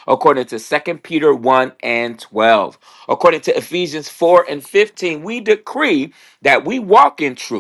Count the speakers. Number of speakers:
1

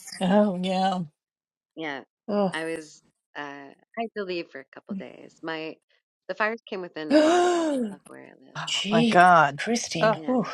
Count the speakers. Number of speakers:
3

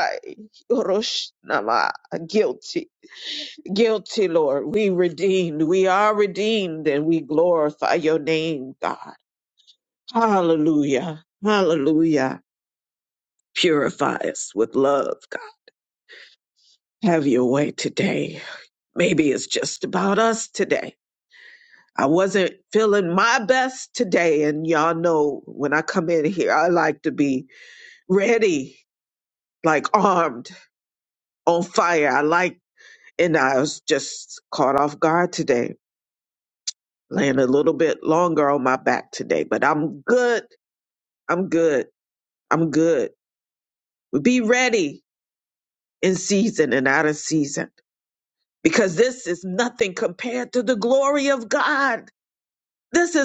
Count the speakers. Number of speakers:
1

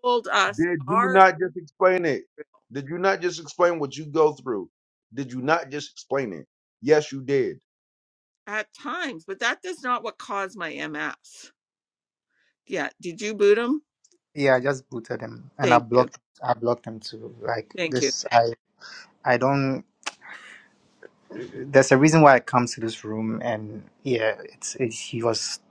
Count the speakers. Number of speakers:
3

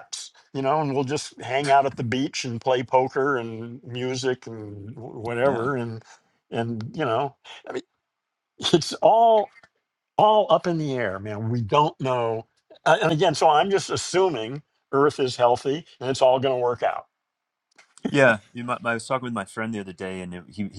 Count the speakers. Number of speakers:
2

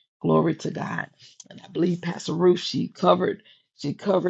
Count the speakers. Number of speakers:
1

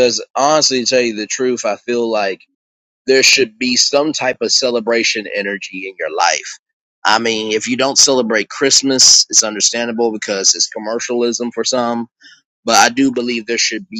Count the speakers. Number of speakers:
1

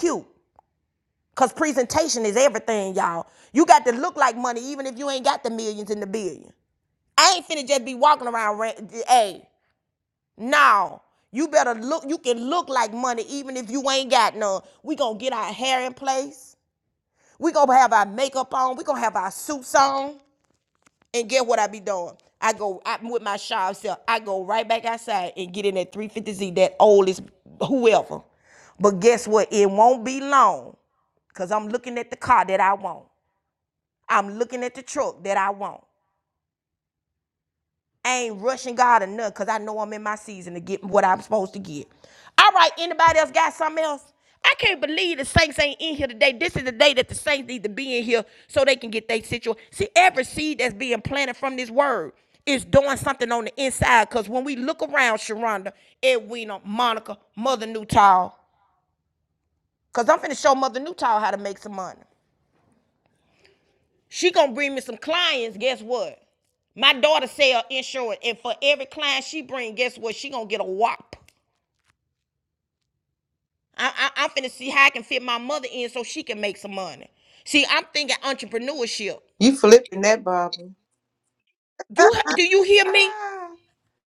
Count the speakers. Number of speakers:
2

